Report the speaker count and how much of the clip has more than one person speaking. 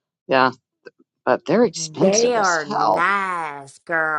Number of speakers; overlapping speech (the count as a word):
two, about 34%